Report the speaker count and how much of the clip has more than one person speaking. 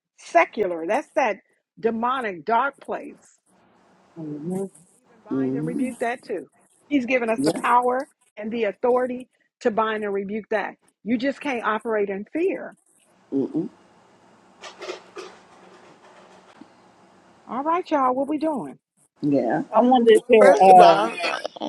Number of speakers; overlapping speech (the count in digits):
3, about 7%